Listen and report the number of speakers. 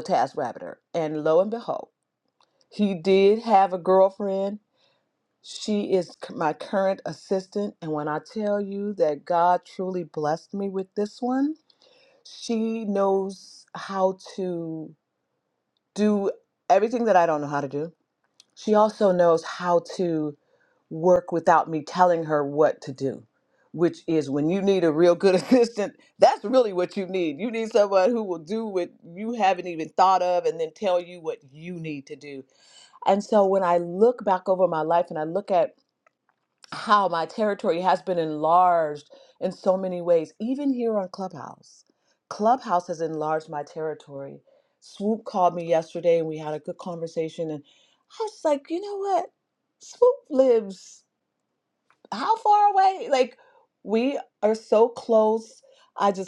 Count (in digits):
1